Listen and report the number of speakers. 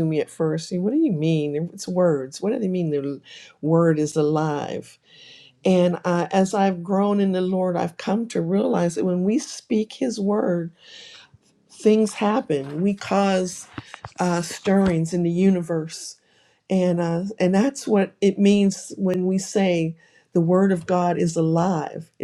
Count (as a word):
one